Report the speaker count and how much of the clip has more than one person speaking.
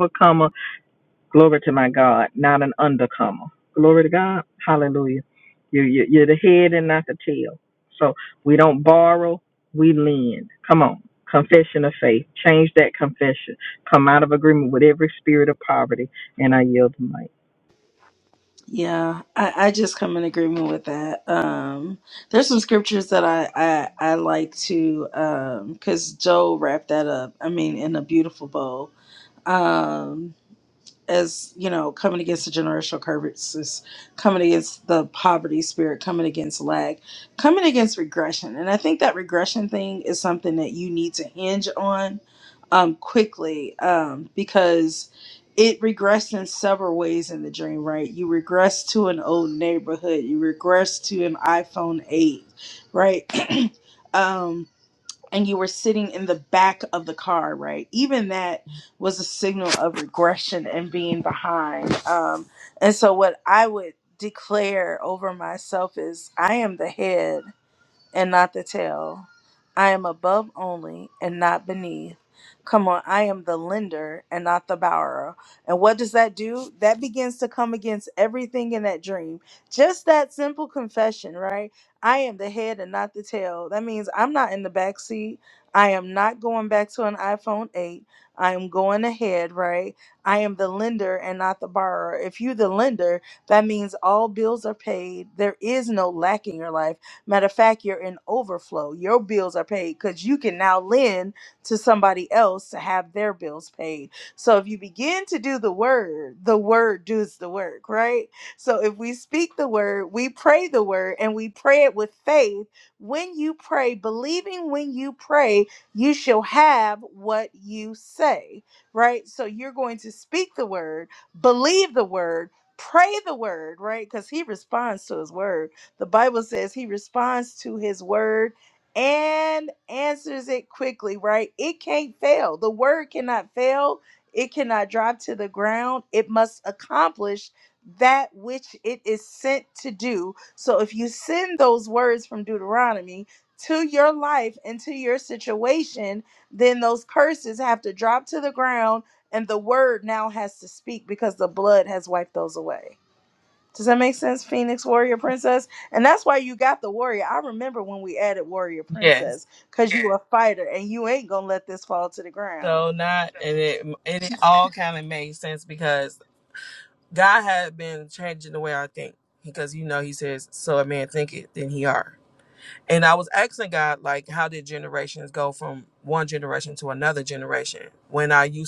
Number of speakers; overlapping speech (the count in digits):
3, under 1%